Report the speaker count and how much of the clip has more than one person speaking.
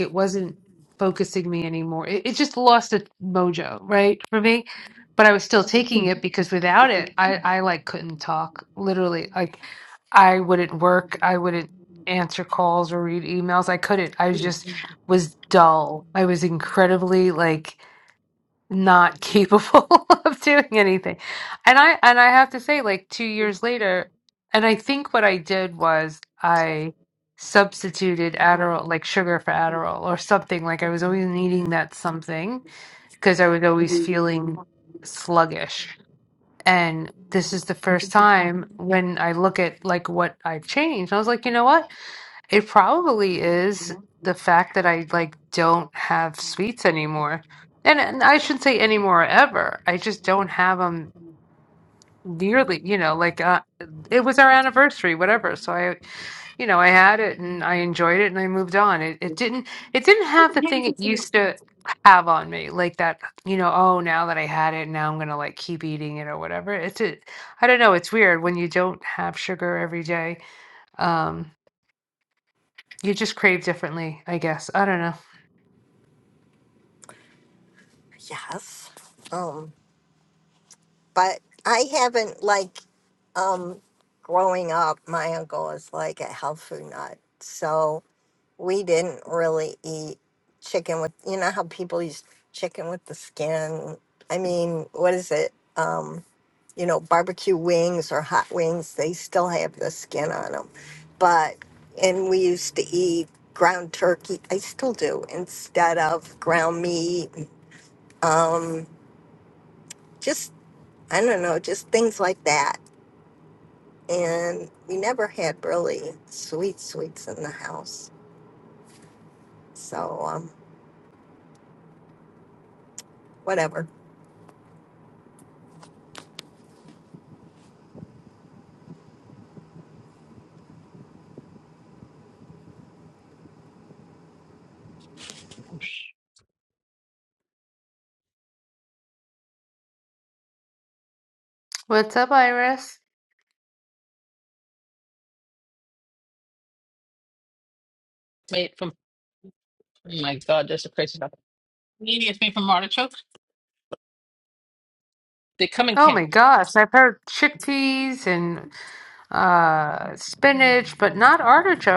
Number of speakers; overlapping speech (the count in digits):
3, under 1%